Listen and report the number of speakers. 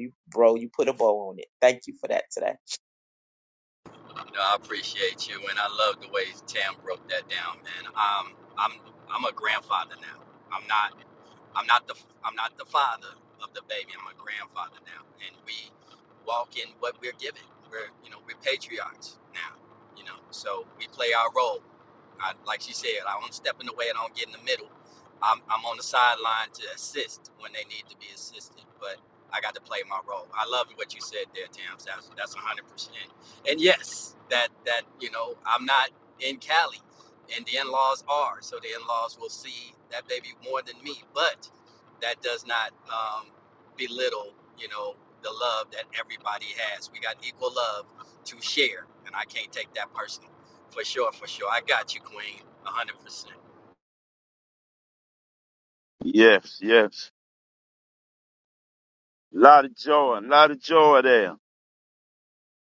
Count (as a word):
three